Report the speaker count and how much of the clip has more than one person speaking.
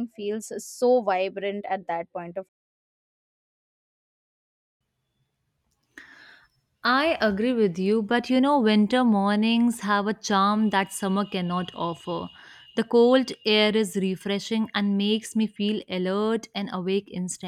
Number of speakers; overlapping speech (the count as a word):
two, no overlap